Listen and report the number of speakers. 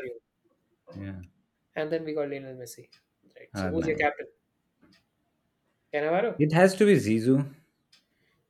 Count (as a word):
two